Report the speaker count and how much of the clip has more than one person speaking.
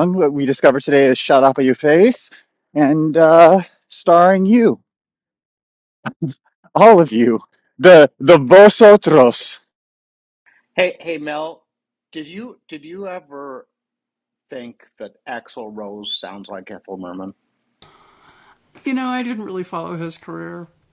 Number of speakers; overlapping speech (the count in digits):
3, no overlap